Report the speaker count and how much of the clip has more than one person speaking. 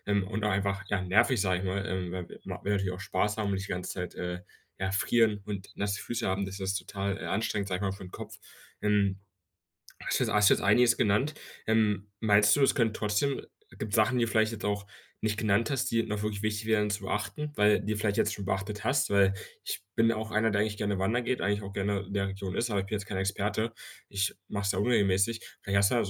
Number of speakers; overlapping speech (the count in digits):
1, no overlap